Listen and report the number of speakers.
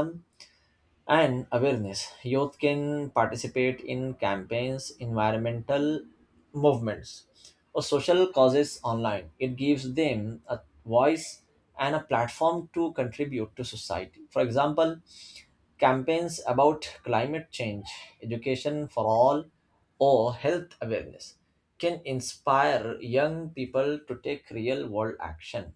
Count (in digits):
1